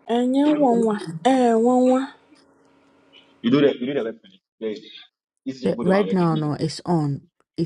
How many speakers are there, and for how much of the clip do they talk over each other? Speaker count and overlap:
three, about 11%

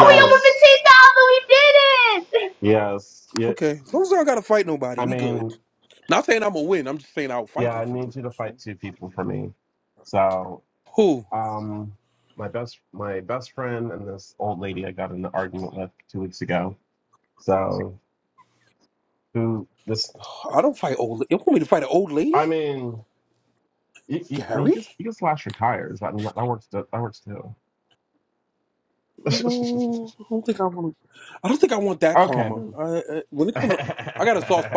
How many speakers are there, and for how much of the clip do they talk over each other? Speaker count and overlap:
three, about 8%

